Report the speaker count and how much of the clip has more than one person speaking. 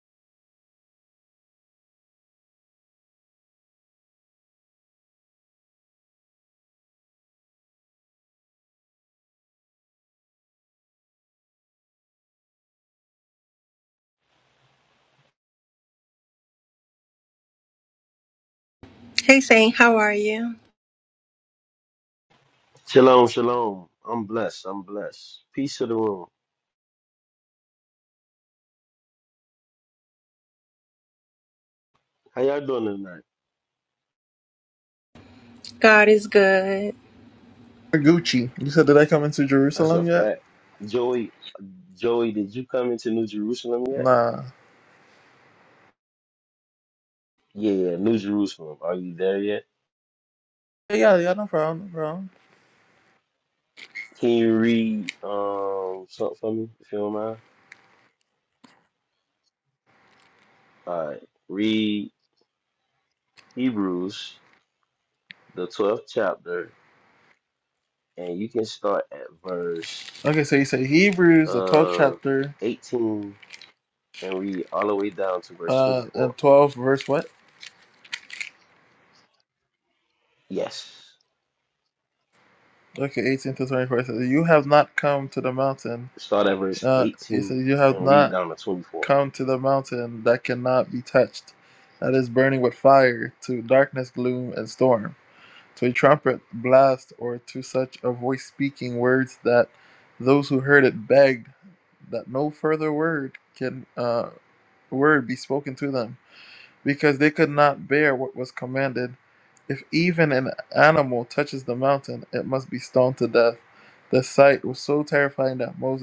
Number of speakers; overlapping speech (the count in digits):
3, about 3%